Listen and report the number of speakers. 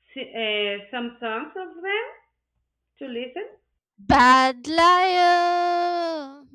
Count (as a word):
two